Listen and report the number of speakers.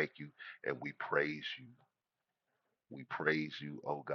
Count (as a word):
one